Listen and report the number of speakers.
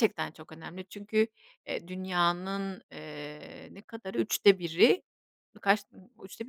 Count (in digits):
1